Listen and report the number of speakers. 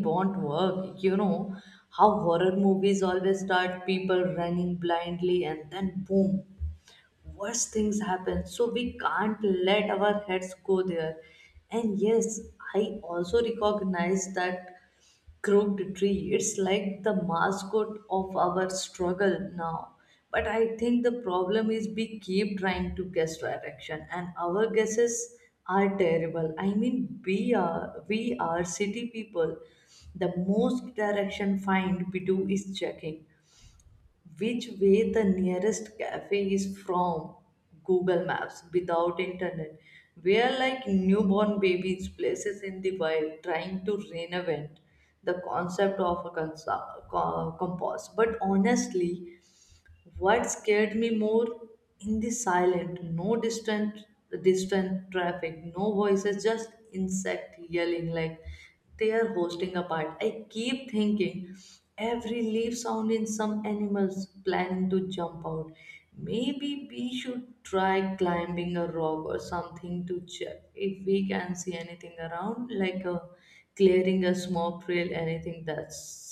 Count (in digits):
1